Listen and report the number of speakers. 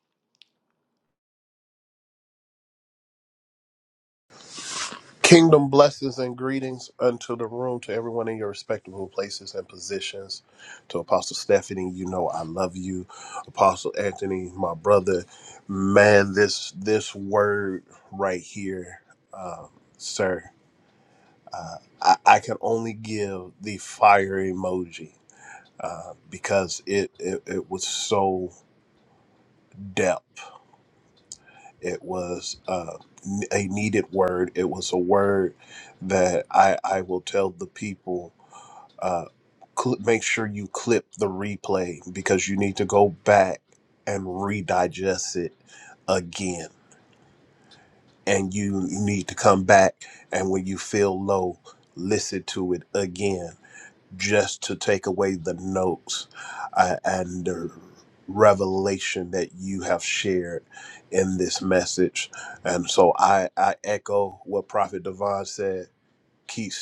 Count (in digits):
1